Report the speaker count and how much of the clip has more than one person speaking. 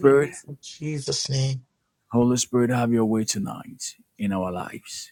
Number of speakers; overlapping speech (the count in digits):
2, about 7%